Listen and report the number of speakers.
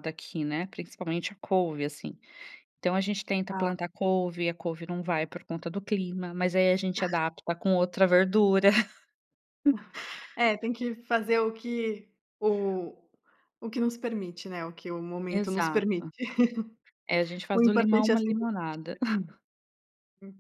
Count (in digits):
2